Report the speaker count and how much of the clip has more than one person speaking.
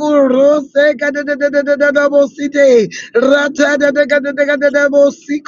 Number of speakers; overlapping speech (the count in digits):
1, no overlap